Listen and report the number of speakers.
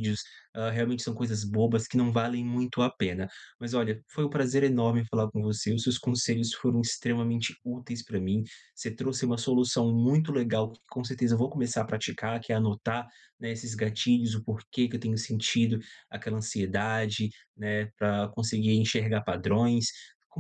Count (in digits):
1